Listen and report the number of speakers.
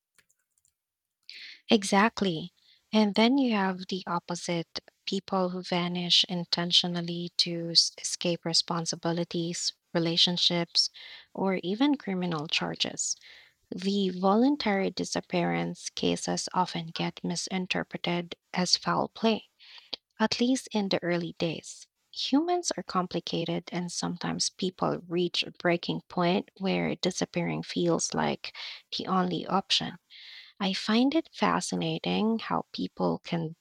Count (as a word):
one